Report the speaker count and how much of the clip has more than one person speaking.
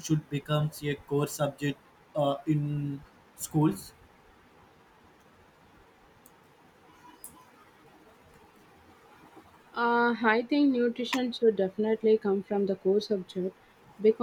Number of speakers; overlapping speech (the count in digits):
2, no overlap